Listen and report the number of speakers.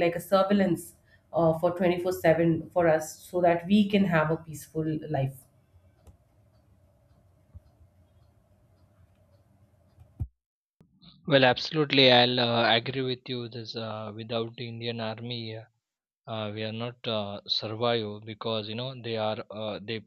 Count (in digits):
2